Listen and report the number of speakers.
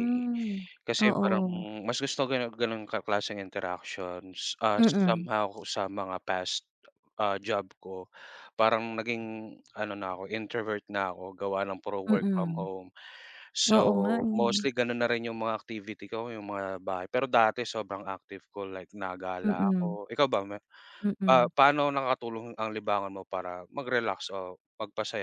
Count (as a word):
two